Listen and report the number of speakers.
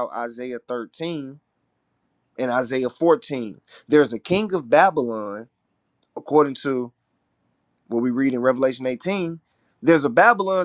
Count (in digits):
1